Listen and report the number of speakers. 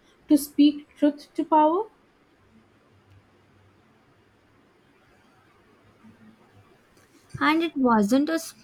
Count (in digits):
2